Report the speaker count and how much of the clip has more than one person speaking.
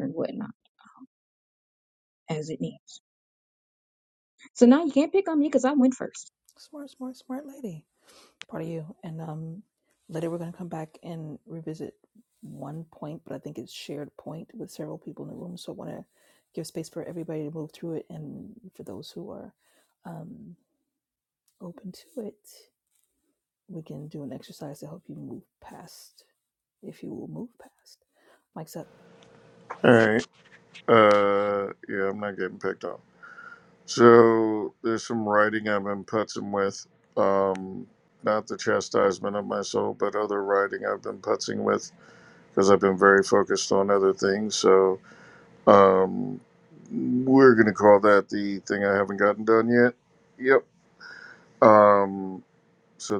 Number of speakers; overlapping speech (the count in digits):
3, no overlap